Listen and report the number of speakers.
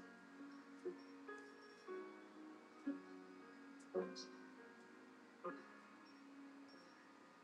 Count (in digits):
0